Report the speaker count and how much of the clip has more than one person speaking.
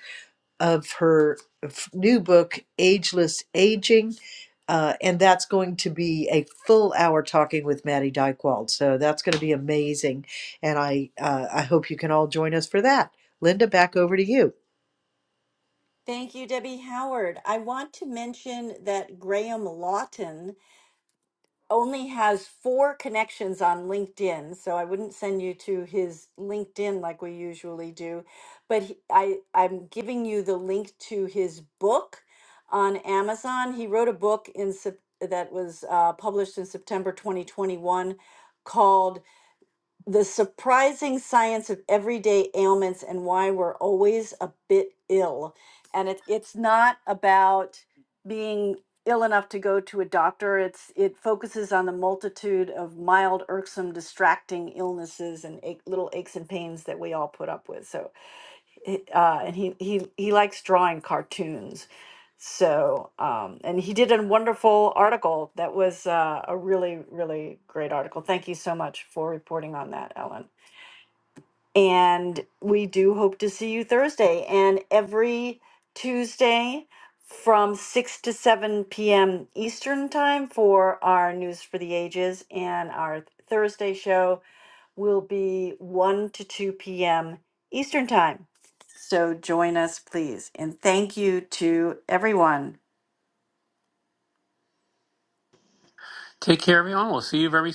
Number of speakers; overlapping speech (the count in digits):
3, no overlap